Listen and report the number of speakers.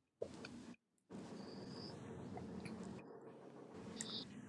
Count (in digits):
0